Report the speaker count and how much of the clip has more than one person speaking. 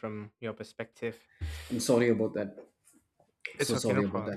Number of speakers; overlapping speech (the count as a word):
two, about 17%